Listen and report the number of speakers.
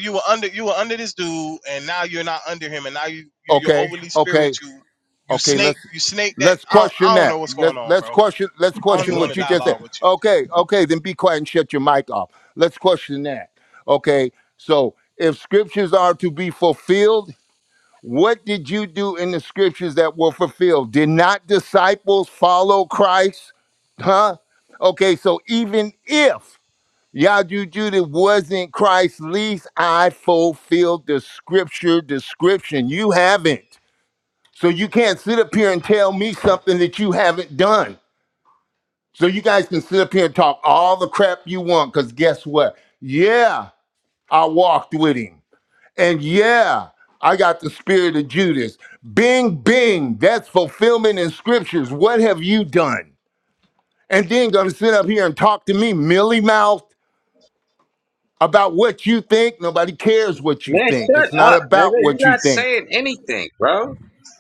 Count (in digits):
3